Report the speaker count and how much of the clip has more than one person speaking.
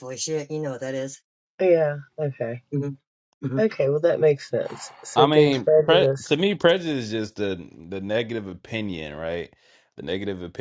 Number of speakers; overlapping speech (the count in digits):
3, about 12%